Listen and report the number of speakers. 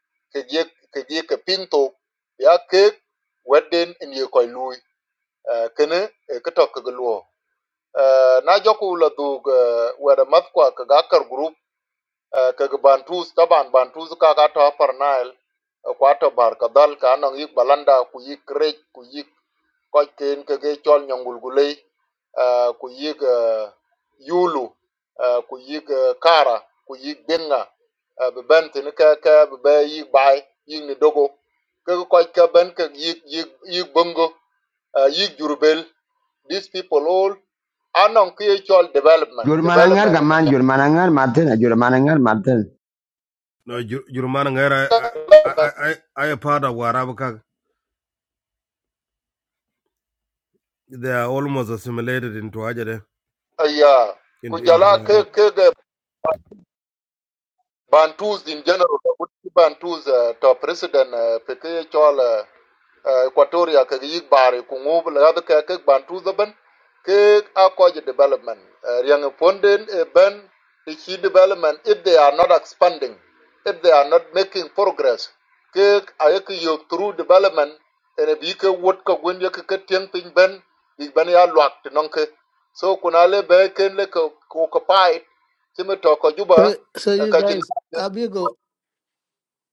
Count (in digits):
4